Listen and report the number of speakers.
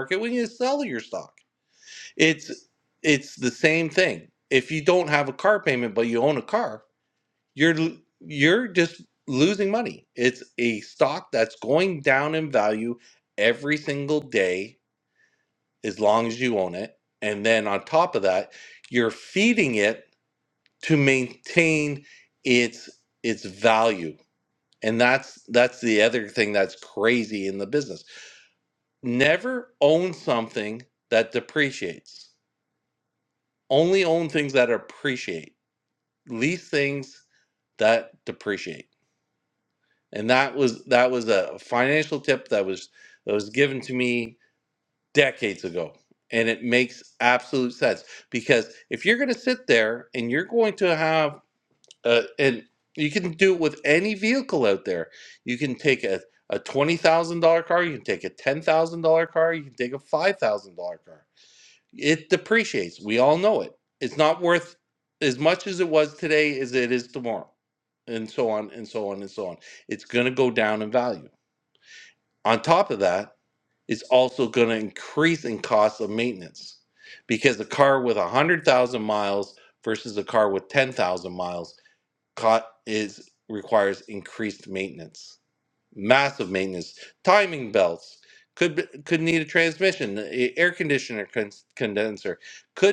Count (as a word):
one